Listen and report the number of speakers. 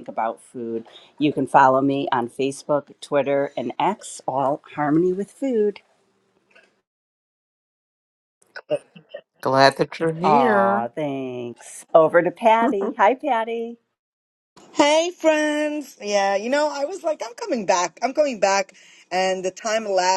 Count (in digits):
3